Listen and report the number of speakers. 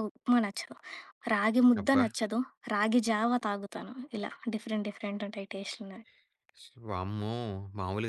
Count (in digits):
2